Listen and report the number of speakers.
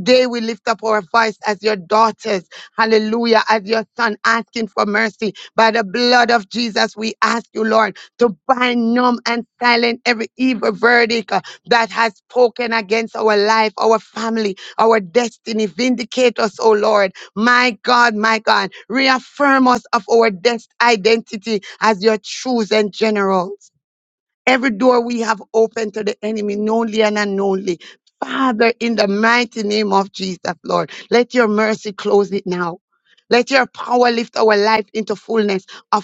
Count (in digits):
1